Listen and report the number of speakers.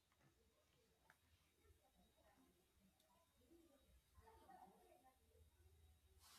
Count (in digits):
0